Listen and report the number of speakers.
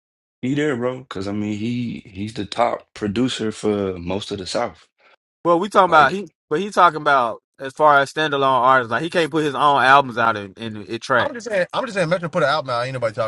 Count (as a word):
three